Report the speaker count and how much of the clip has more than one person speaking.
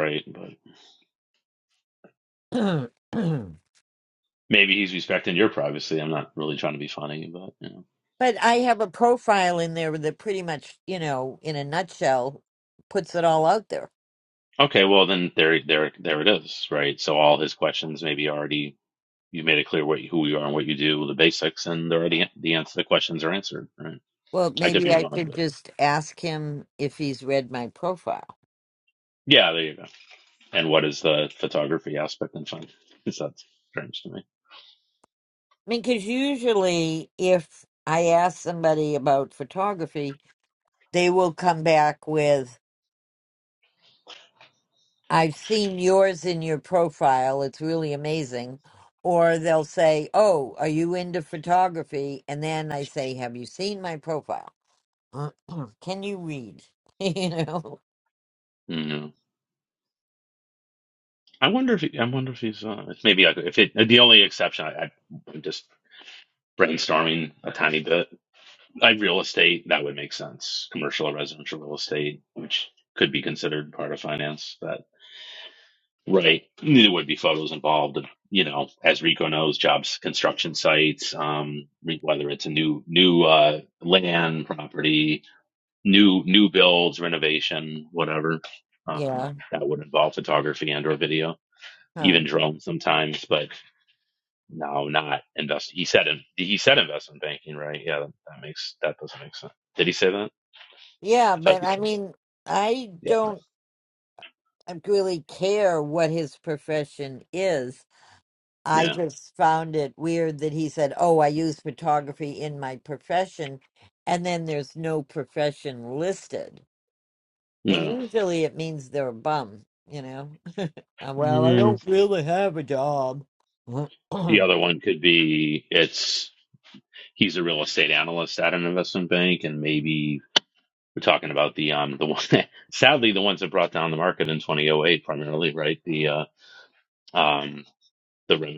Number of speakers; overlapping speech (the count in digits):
2, about 2%